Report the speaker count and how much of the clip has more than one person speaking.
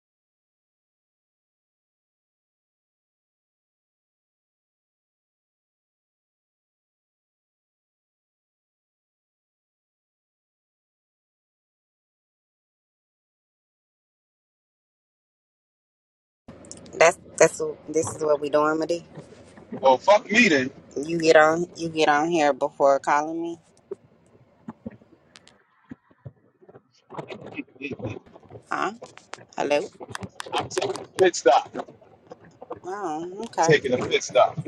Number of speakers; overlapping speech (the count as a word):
two, under 1%